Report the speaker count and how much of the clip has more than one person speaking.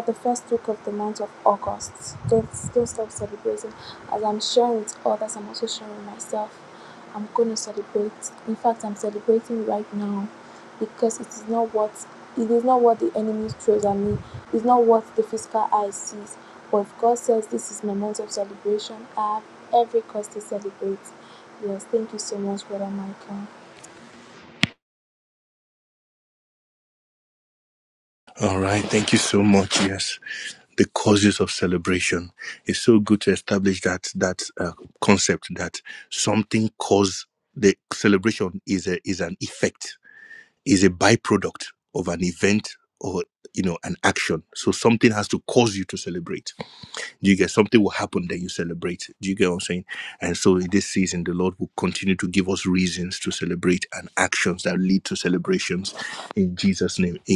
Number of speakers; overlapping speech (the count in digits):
2, no overlap